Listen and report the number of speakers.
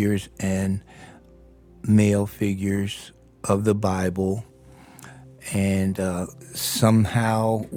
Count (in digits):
1